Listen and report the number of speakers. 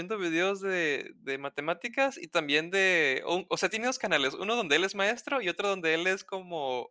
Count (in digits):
1